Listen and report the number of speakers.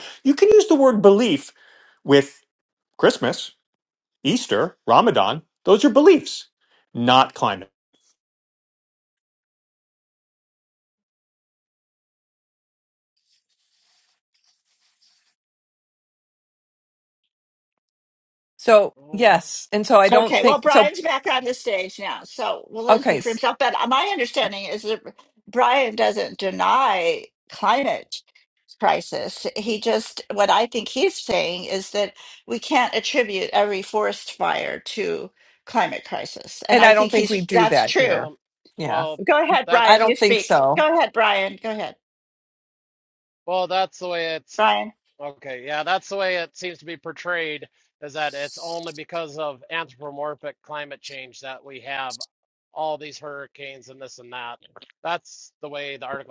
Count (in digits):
4